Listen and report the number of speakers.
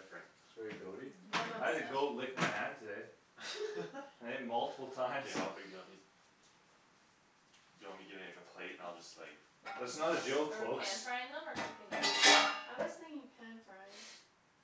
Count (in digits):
4